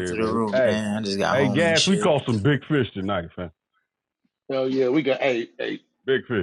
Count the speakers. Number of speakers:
3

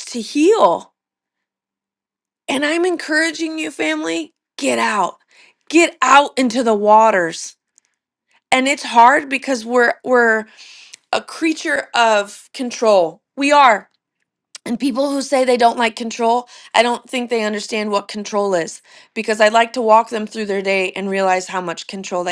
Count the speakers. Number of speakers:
1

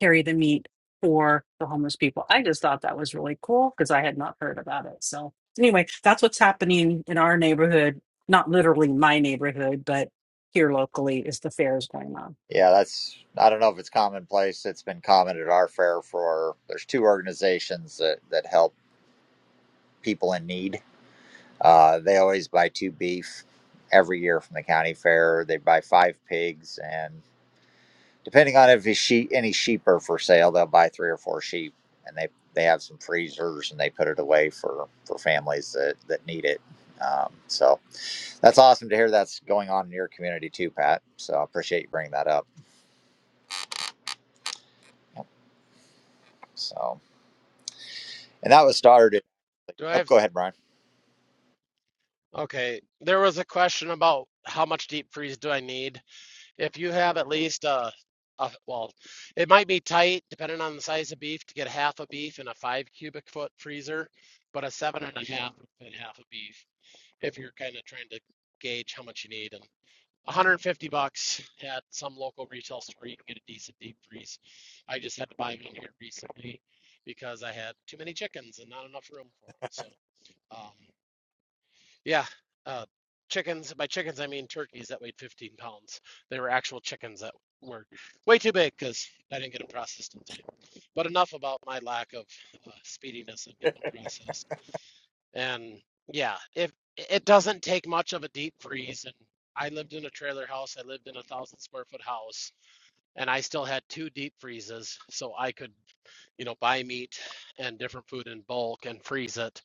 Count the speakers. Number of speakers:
3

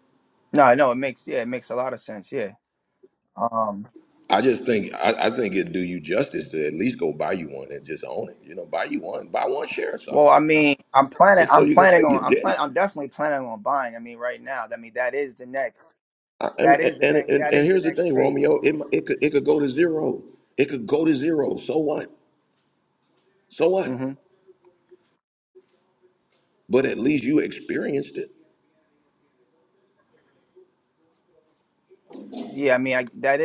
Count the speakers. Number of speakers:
2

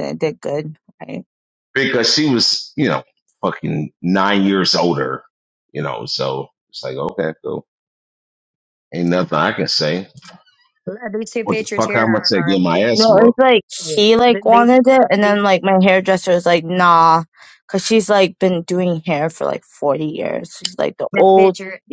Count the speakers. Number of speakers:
3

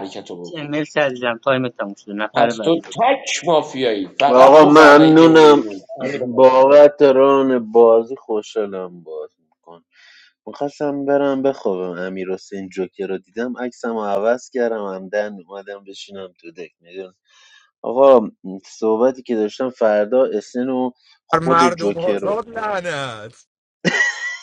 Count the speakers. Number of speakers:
4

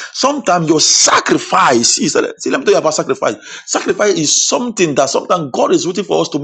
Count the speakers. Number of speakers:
1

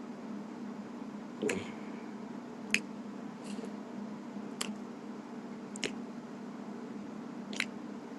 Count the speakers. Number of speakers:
0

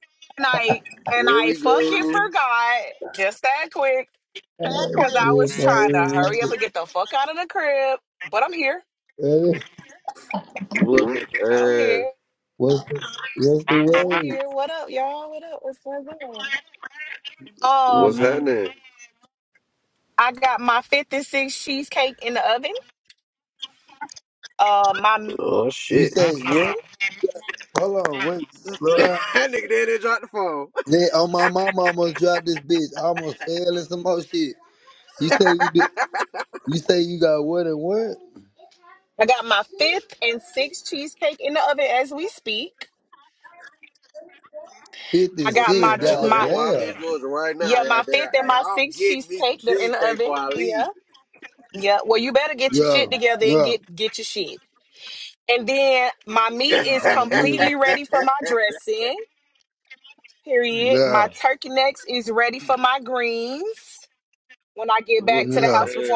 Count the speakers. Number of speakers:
3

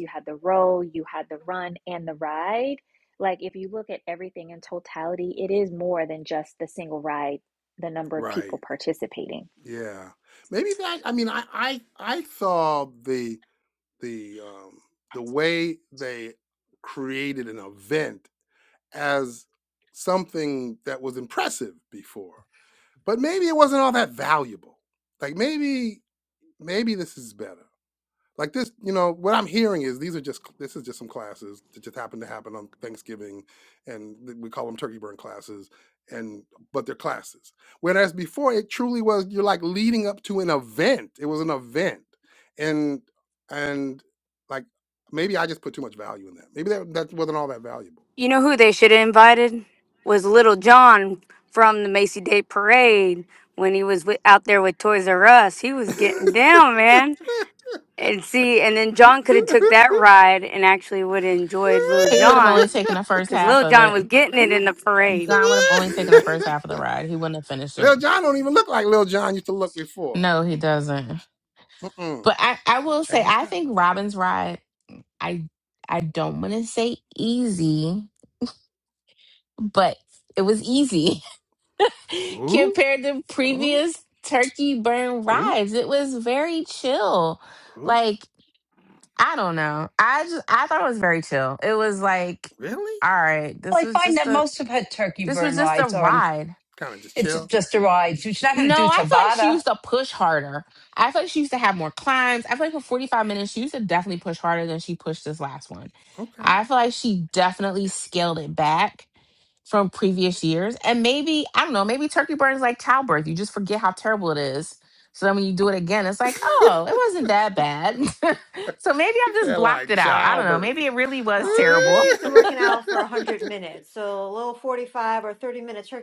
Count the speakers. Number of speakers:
6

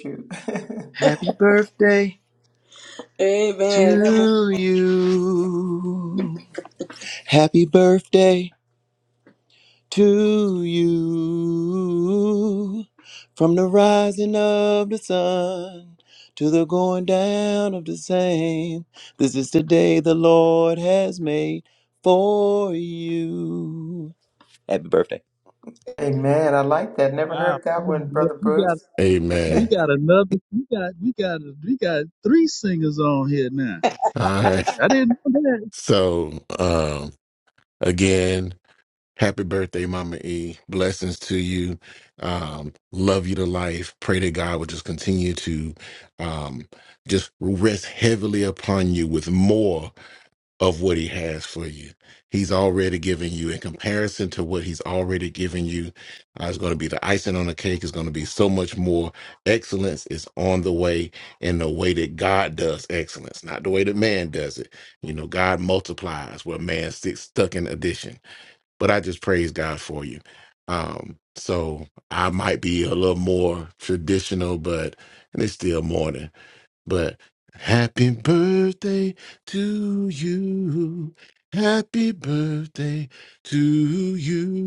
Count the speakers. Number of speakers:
5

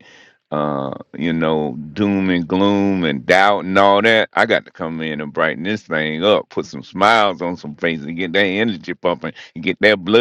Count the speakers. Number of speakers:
1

